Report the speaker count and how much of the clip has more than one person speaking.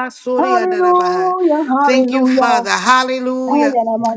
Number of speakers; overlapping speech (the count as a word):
two, about 48%